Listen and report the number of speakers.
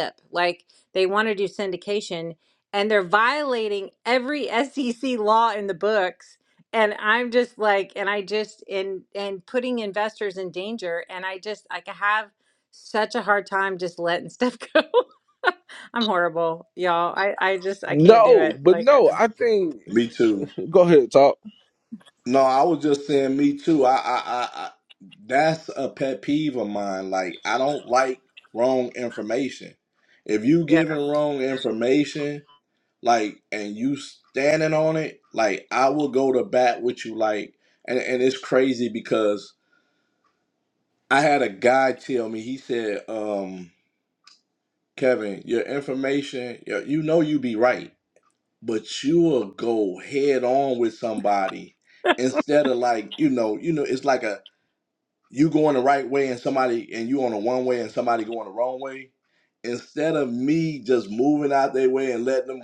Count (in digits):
3